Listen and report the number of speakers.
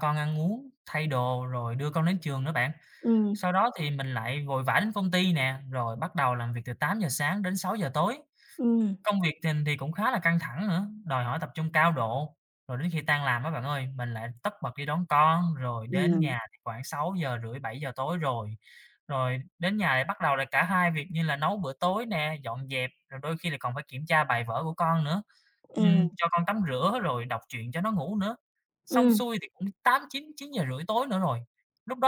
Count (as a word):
two